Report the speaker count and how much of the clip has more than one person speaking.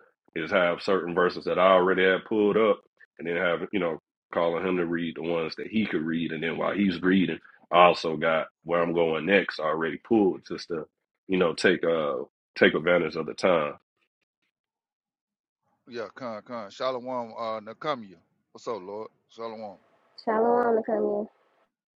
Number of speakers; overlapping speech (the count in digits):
3, no overlap